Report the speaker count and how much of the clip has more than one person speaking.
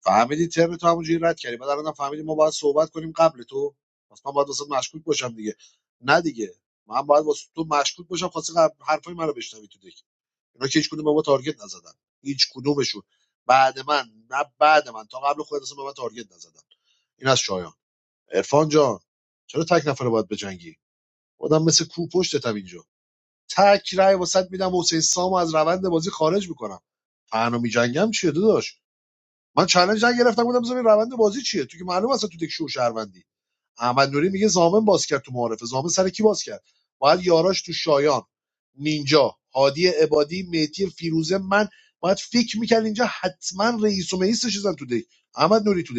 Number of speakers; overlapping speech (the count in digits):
1, no overlap